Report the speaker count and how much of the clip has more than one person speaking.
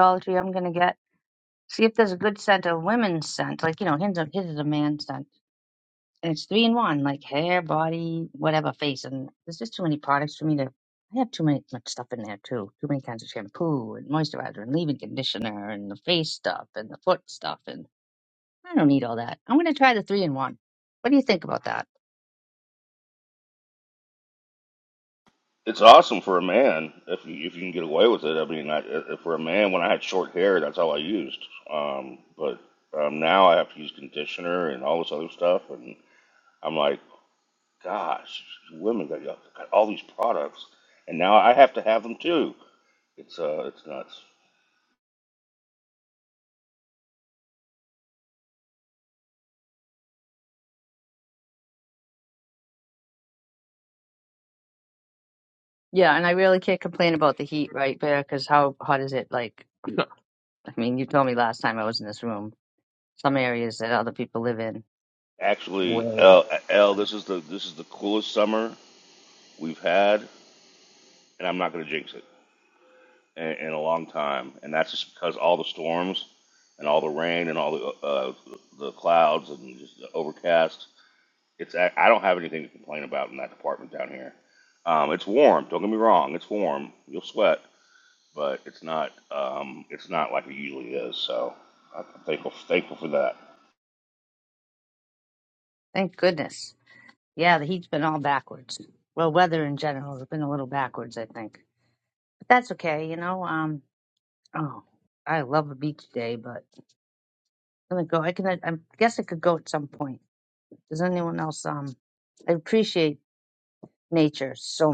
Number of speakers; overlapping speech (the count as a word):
two, under 1%